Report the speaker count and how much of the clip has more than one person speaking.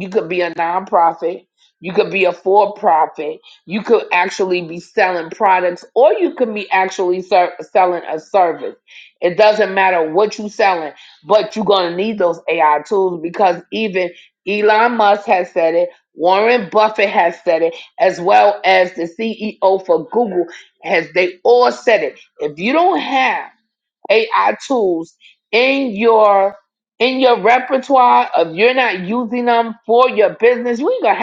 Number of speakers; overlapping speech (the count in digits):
1, no overlap